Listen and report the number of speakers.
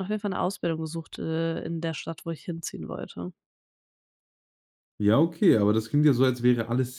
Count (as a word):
two